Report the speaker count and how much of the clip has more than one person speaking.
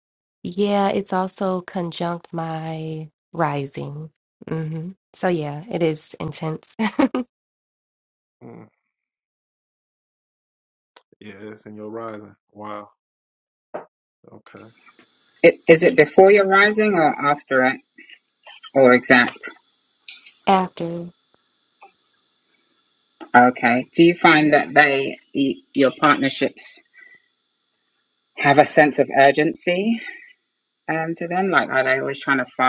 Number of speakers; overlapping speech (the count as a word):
three, no overlap